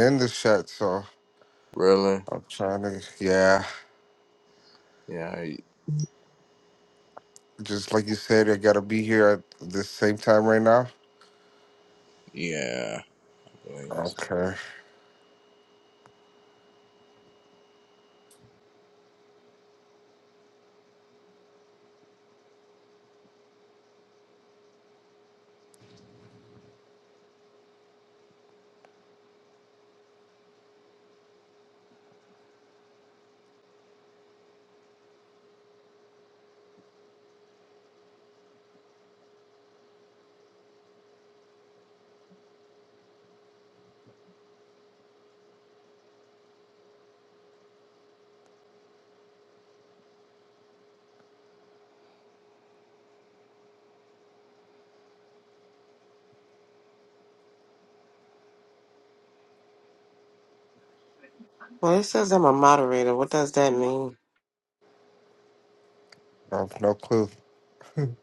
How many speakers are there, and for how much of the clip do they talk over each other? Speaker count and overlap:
3, under 1%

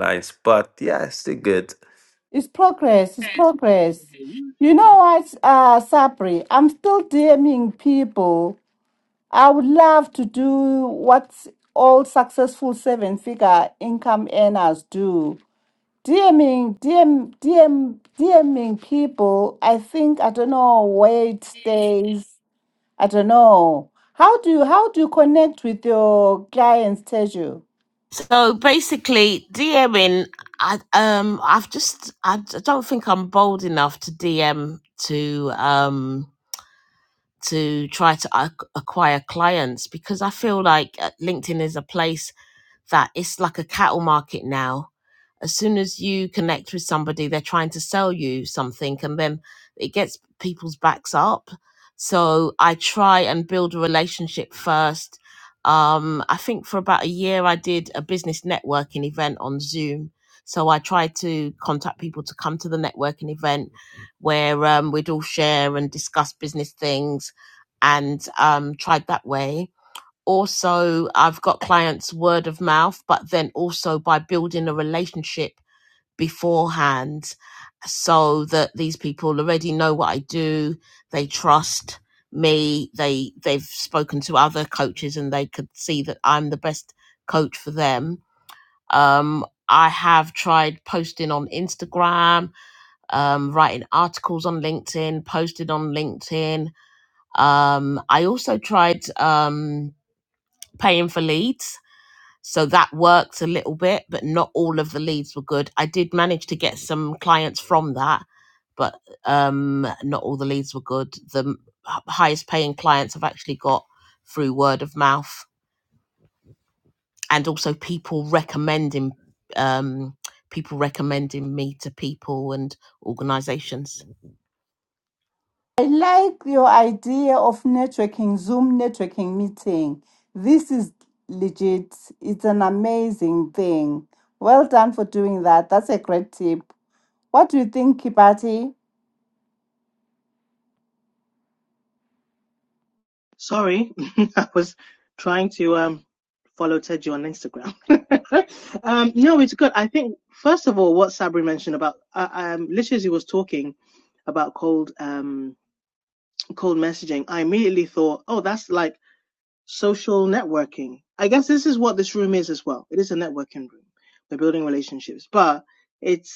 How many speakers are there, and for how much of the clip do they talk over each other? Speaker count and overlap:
4, under 1%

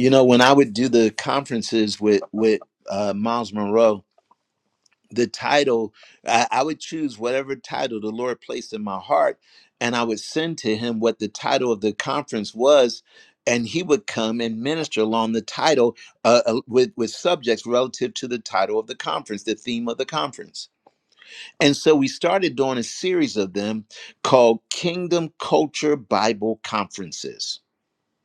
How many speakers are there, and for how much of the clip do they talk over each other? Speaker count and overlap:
1, no overlap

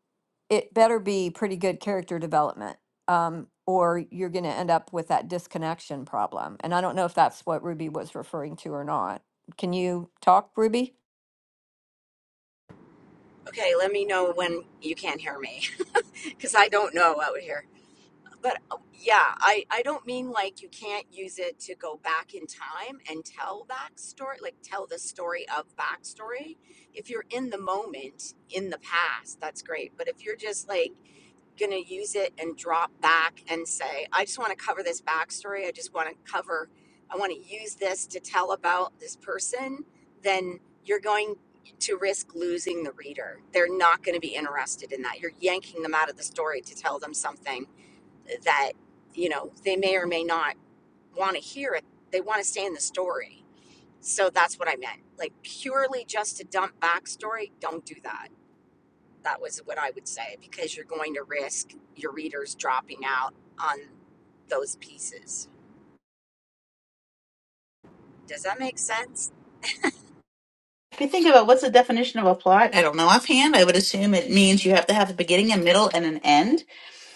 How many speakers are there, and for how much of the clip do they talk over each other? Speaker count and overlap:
3, no overlap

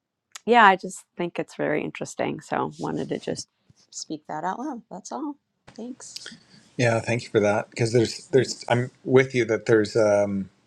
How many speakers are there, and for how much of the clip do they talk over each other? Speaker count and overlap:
2, no overlap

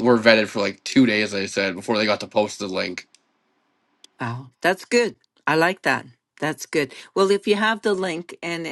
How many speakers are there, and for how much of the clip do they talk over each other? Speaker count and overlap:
2, no overlap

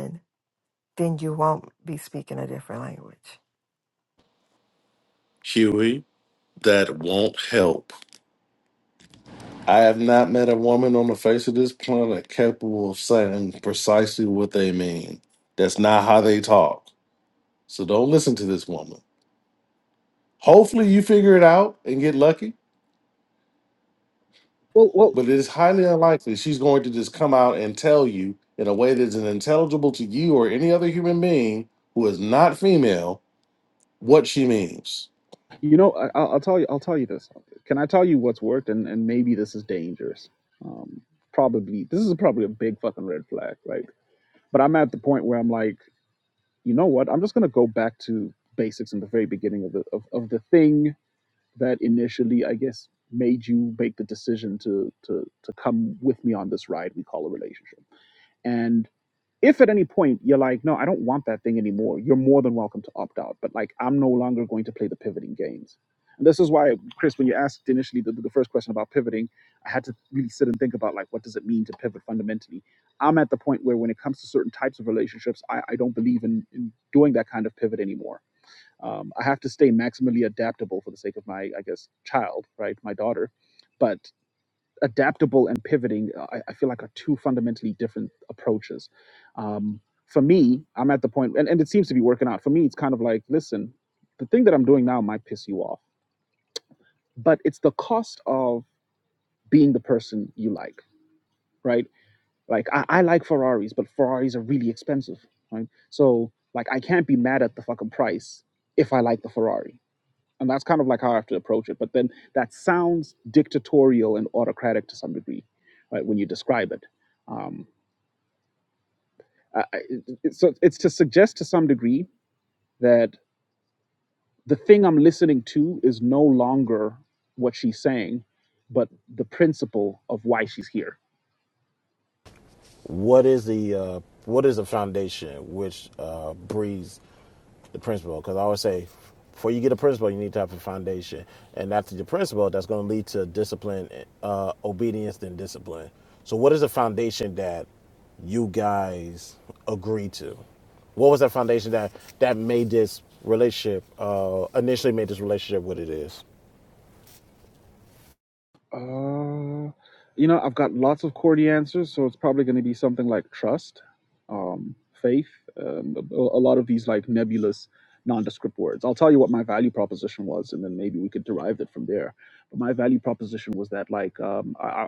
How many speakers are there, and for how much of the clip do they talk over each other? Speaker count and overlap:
4, under 1%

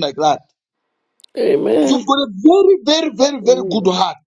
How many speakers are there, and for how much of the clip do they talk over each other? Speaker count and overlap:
2, about 19%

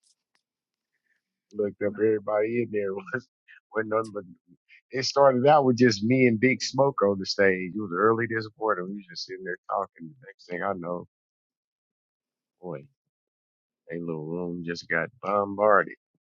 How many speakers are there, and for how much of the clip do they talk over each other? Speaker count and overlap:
1, no overlap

